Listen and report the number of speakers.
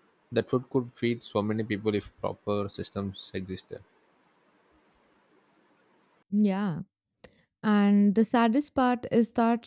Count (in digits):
2